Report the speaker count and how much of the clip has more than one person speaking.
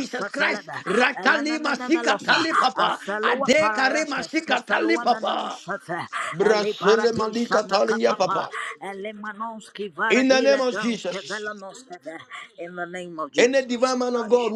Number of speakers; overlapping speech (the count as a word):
two, about 64%